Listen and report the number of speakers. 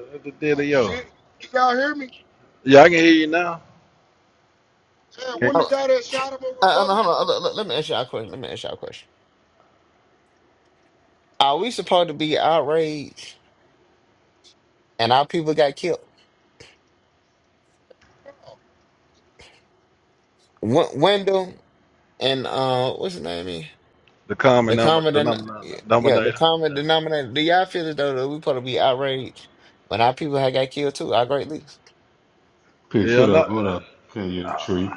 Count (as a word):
four